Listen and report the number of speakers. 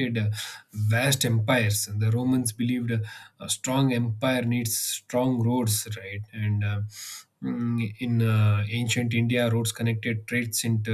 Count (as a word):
one